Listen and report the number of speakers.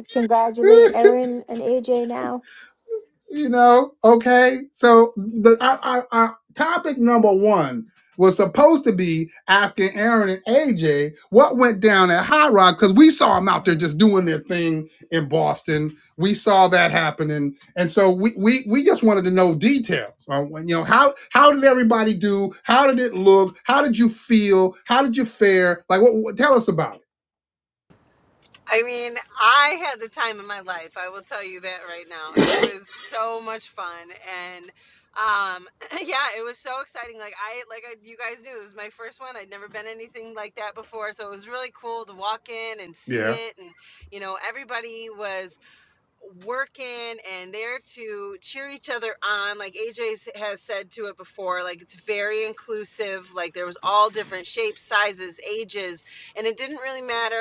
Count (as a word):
three